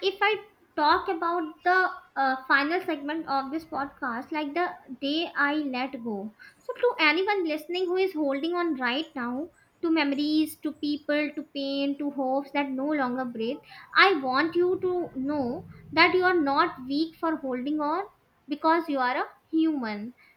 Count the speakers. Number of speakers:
one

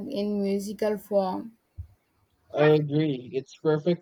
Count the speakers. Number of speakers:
two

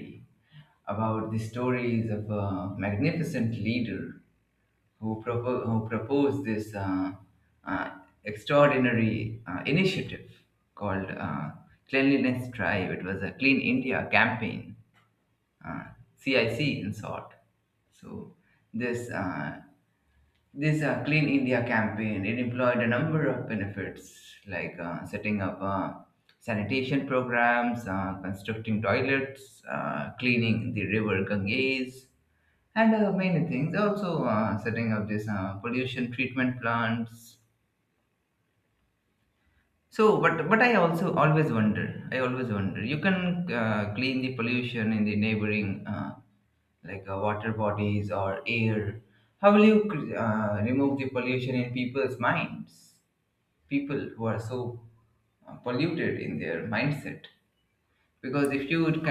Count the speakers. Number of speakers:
one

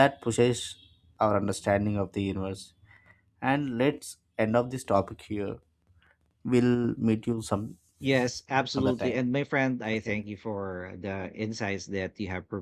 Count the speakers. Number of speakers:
two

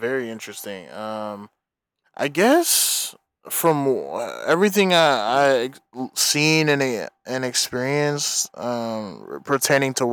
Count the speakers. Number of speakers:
one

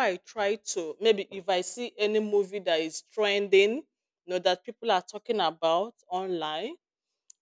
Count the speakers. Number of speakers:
one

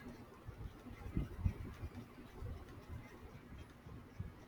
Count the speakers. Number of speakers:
zero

